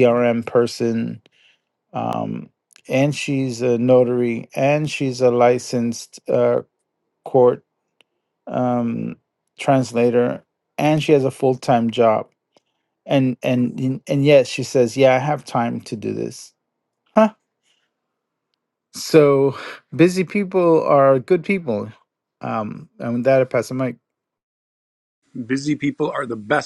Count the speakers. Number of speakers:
two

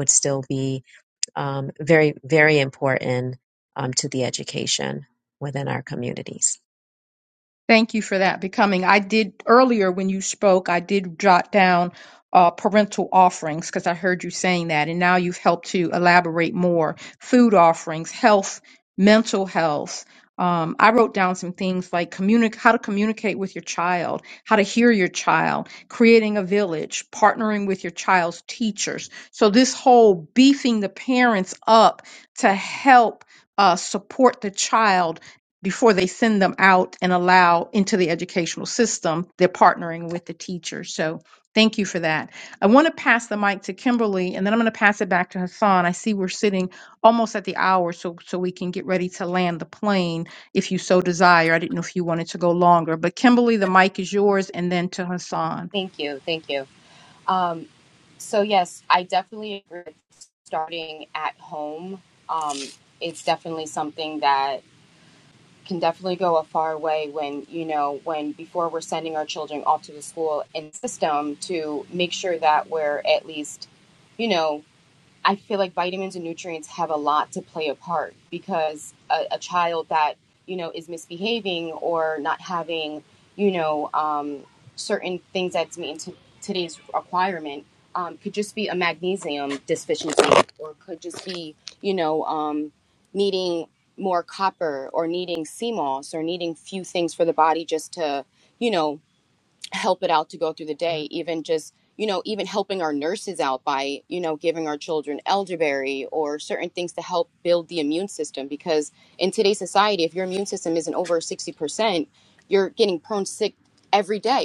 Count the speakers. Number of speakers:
three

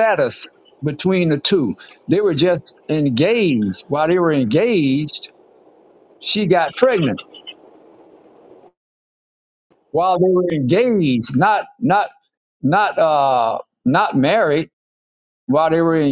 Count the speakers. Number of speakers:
one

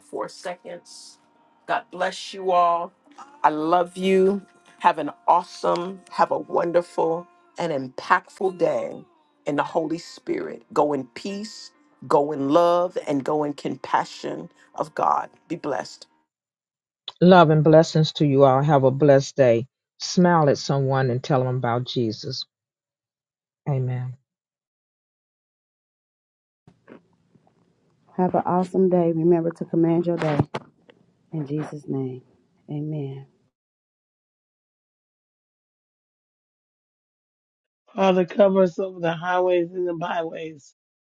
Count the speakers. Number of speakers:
four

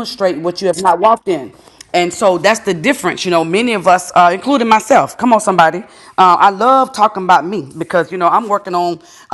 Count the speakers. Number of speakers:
one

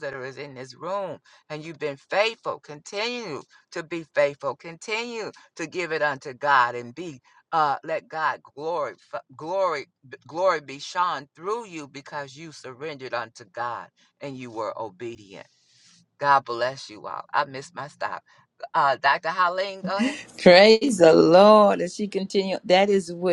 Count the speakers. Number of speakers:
two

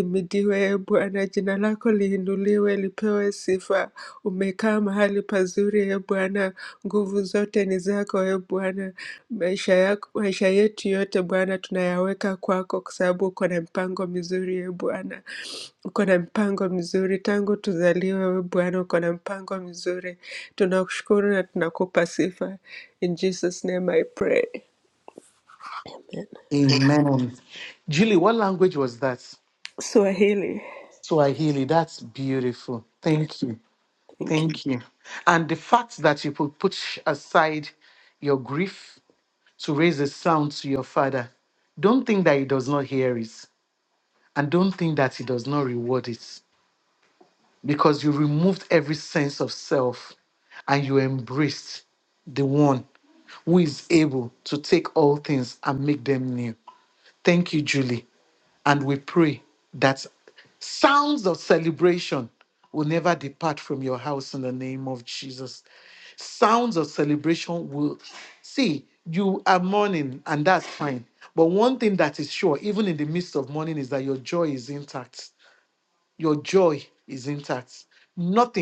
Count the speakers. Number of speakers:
two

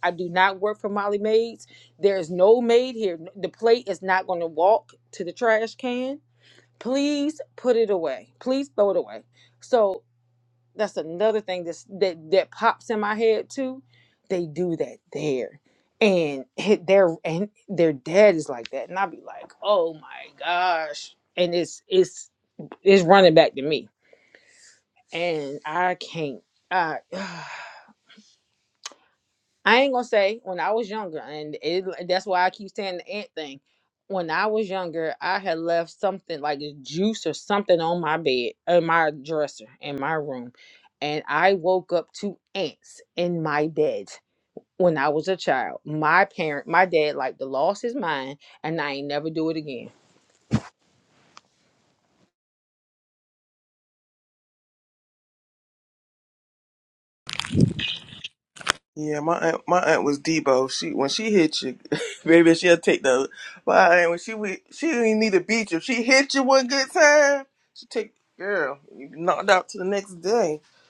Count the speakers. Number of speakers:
two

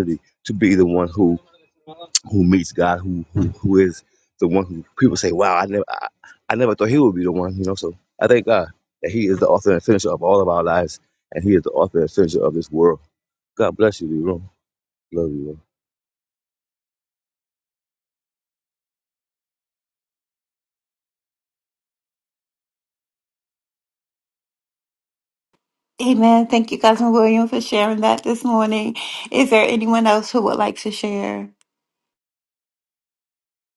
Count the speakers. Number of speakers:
two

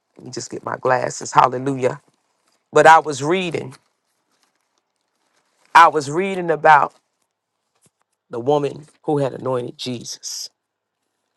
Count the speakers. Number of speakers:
one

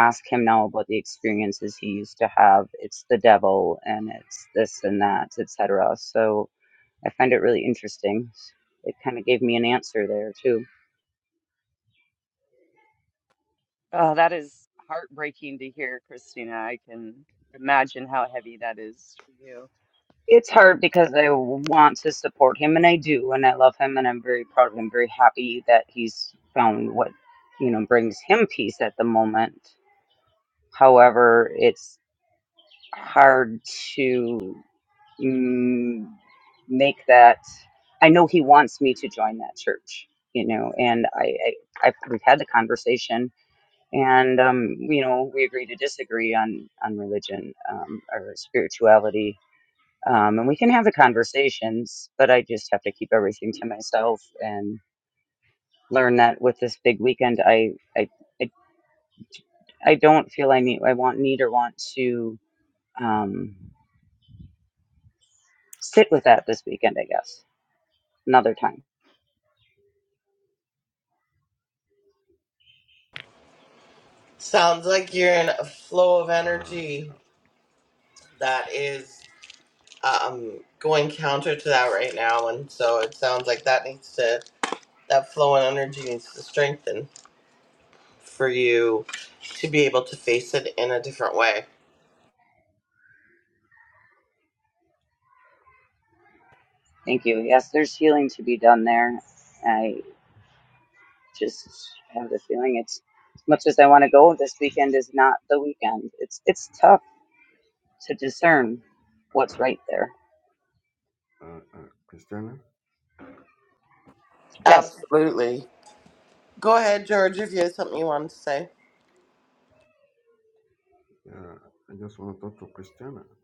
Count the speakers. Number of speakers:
four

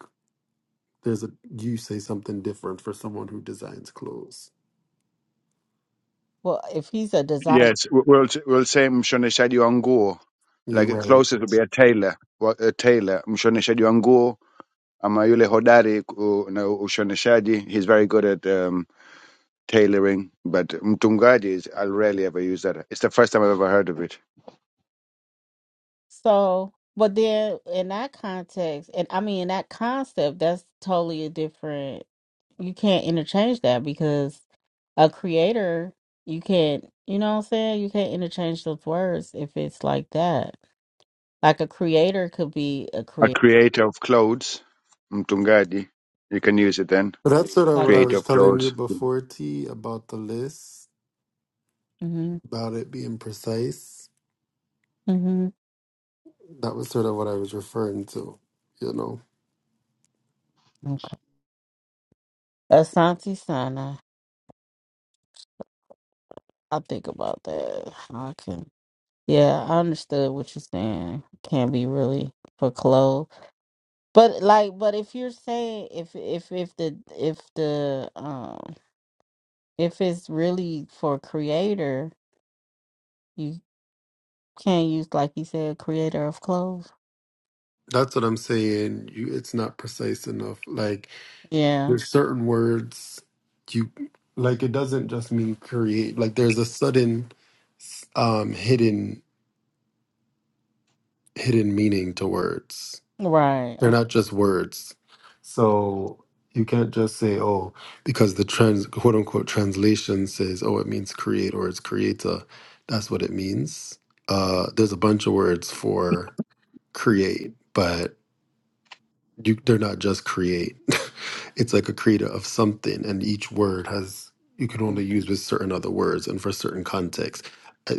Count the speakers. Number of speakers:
three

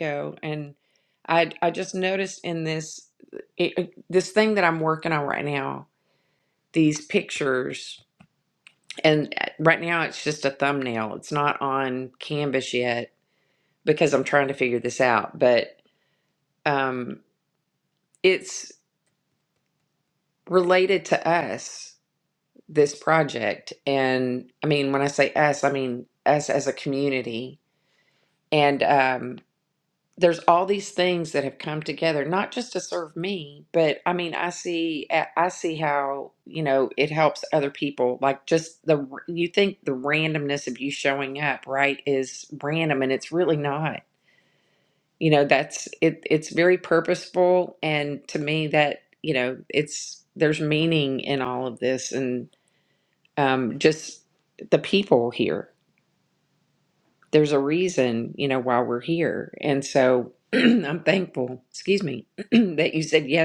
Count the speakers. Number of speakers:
one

